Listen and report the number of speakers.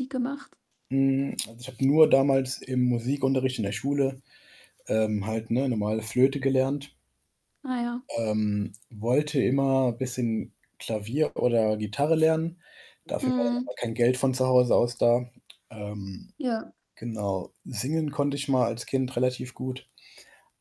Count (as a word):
two